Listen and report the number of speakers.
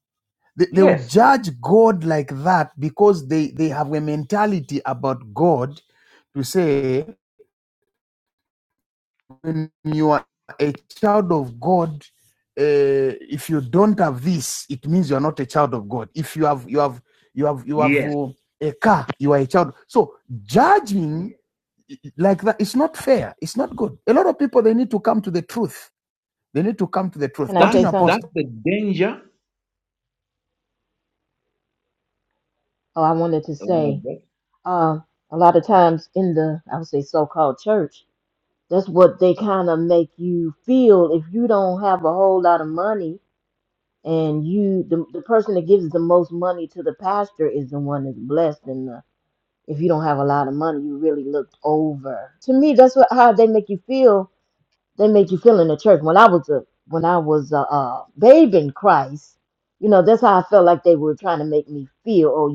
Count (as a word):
three